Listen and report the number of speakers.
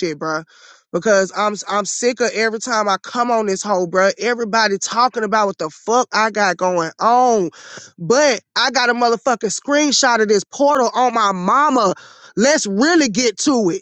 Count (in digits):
1